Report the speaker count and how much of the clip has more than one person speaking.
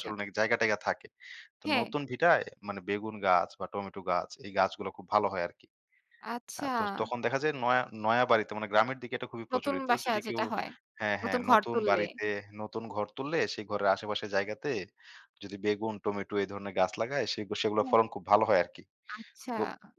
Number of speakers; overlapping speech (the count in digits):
2, about 13%